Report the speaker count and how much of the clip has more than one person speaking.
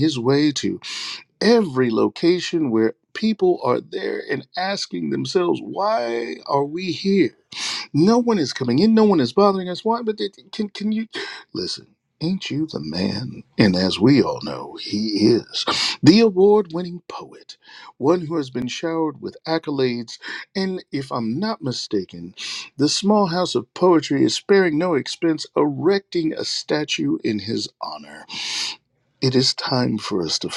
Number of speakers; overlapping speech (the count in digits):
1, no overlap